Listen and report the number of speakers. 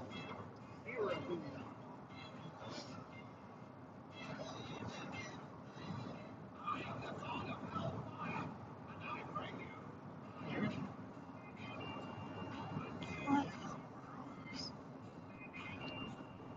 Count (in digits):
0